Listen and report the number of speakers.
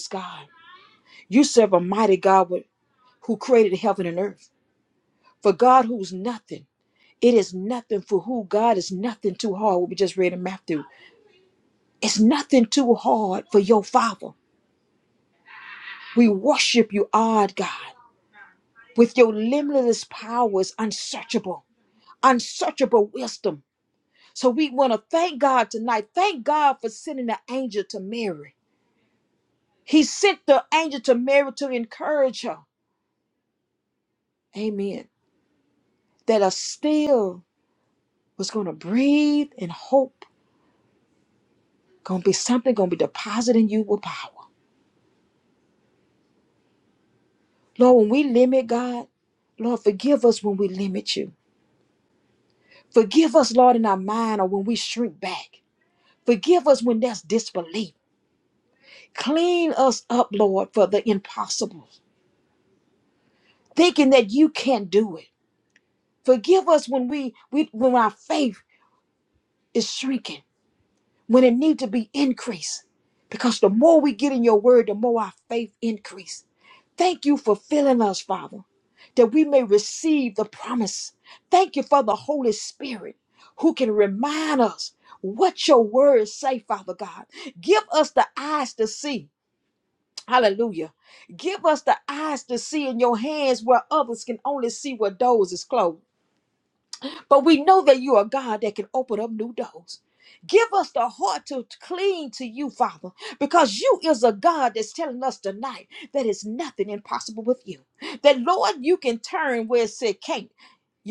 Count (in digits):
1